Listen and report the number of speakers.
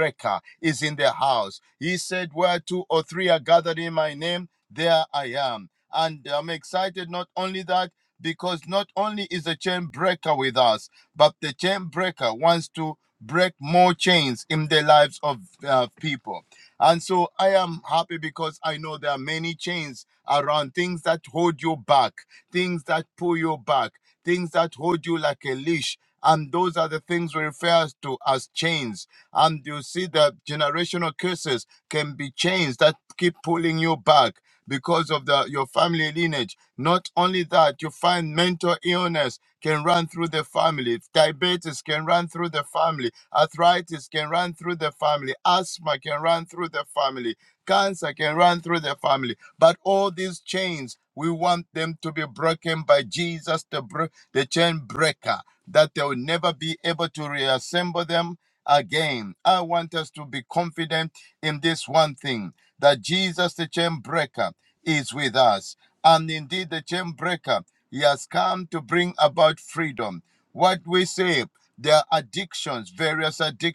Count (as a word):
one